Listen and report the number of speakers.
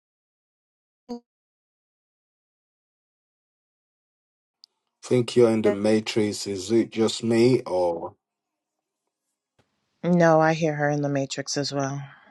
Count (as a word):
two